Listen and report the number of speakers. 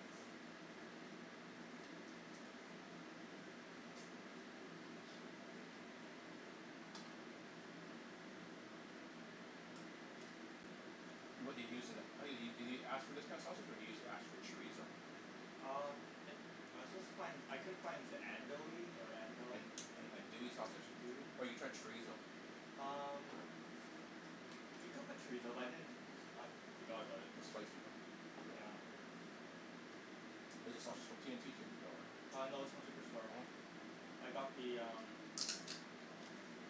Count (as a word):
two